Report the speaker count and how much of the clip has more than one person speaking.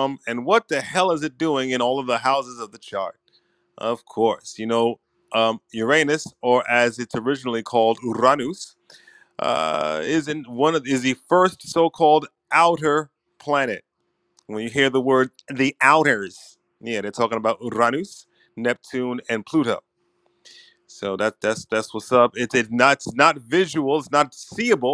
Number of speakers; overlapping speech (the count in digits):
1, no overlap